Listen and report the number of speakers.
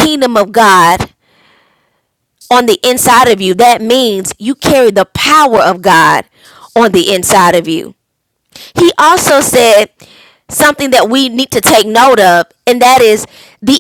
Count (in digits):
1